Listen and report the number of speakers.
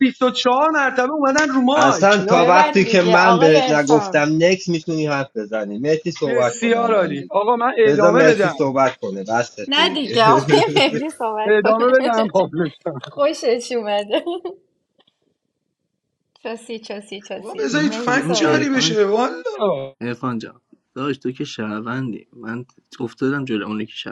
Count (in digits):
4